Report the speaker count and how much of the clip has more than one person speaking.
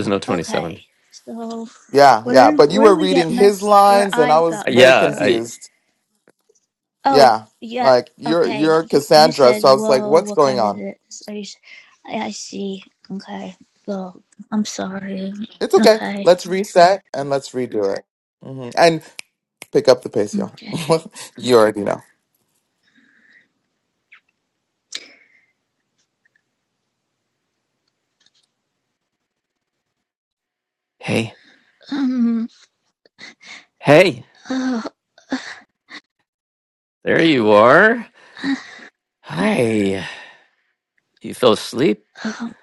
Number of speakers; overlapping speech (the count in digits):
3, about 16%